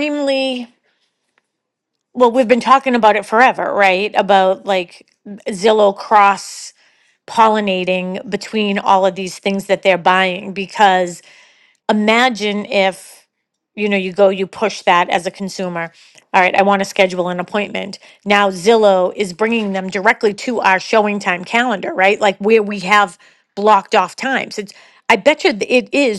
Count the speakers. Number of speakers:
one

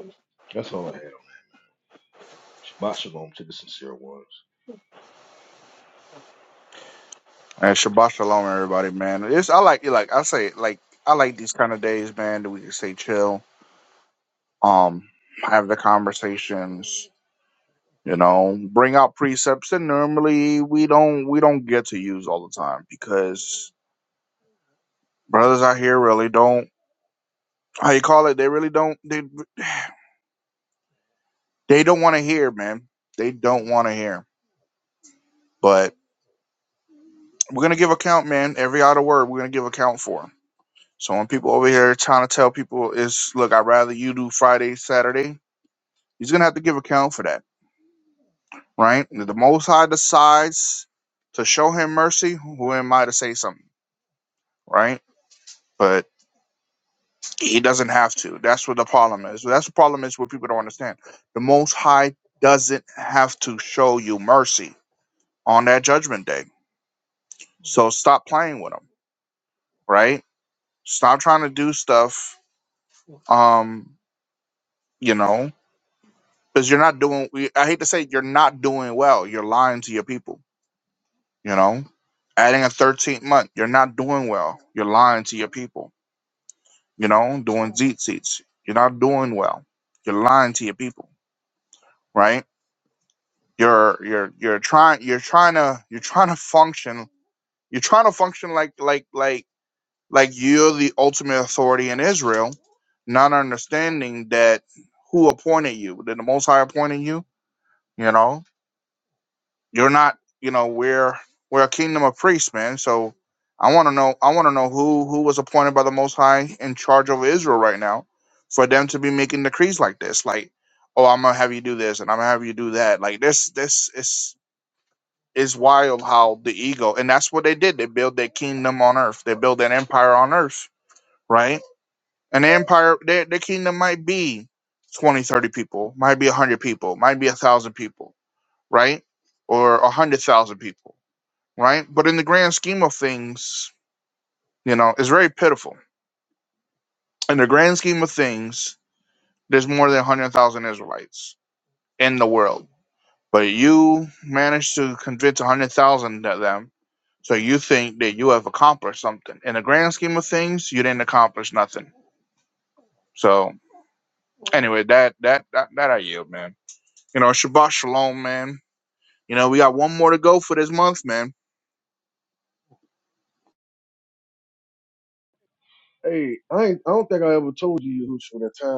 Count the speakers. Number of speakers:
three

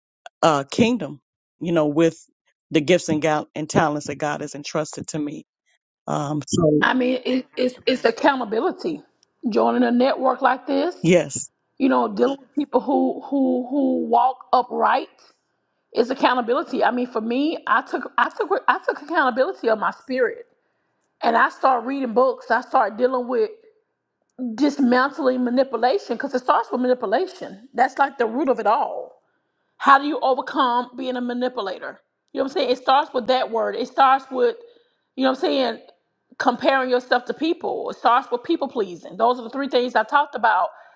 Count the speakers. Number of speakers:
two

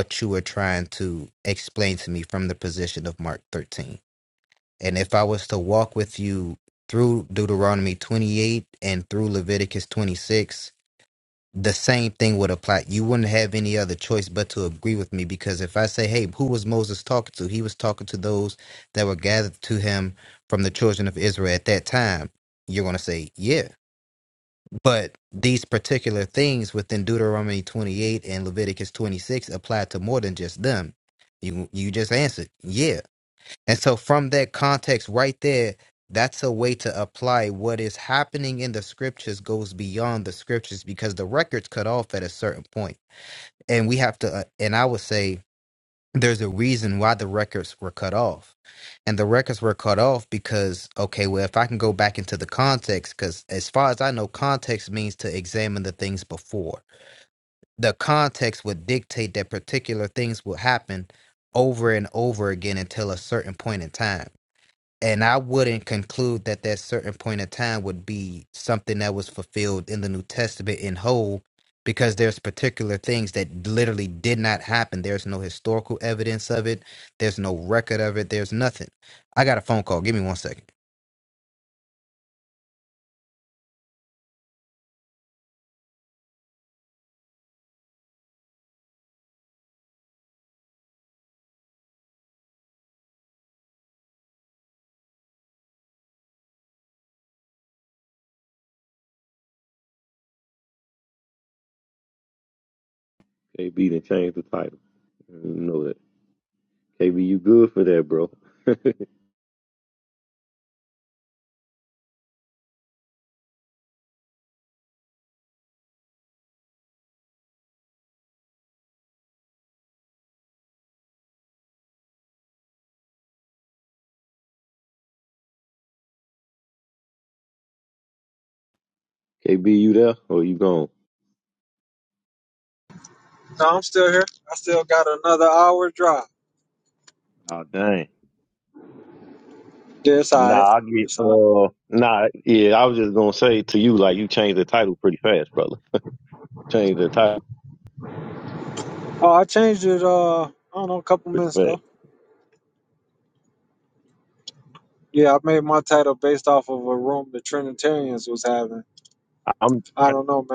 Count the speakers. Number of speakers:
three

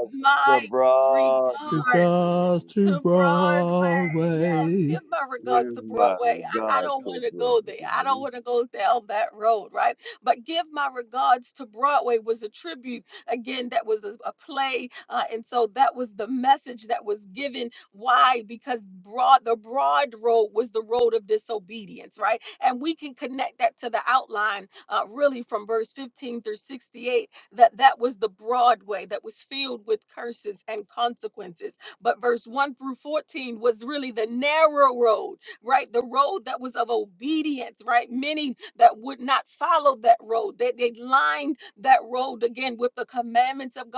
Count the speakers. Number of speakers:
three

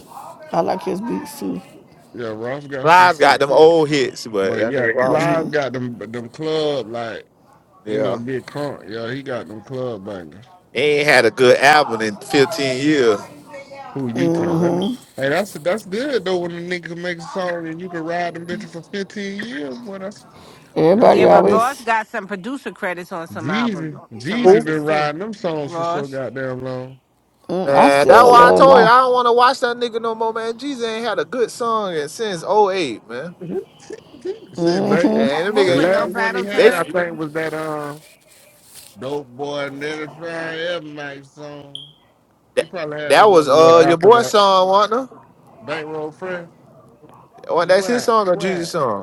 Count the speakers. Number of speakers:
four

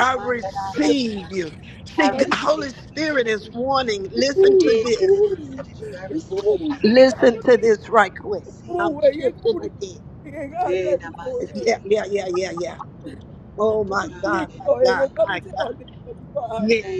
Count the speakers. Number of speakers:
three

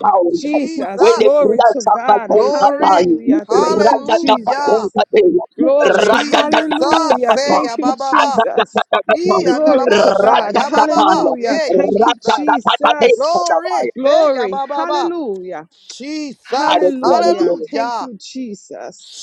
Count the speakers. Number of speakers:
three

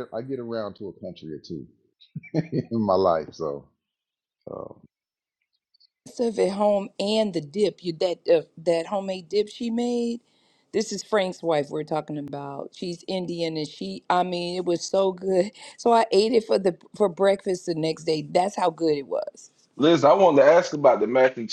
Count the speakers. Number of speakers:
three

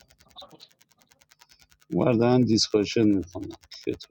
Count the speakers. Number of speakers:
one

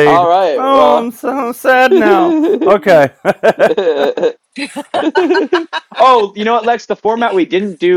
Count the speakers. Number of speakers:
two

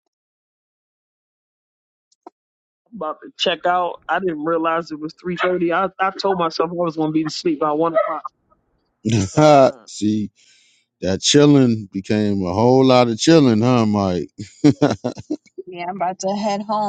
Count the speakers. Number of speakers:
three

